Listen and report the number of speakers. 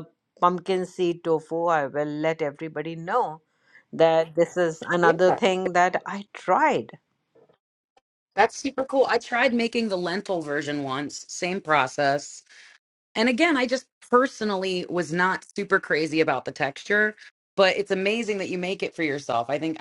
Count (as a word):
two